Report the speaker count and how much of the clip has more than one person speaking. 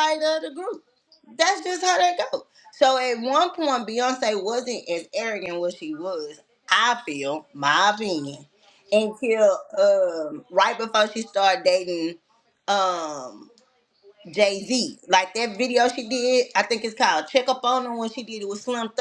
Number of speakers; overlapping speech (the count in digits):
1, no overlap